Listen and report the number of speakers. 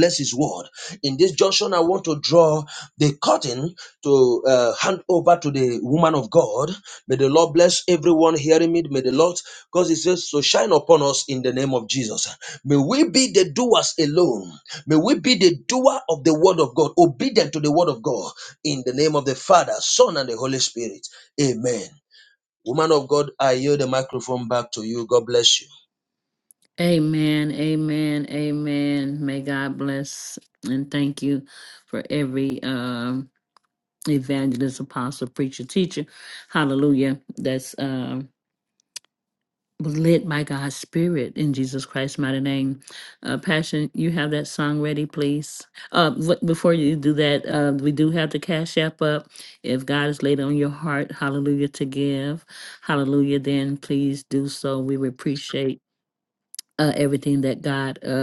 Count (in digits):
2